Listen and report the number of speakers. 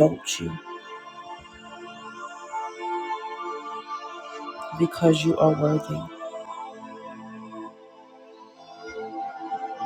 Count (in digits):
1